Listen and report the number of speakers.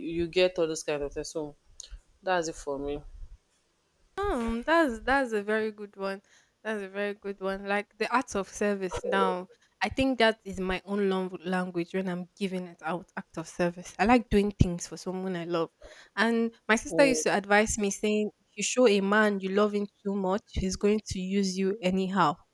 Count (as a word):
two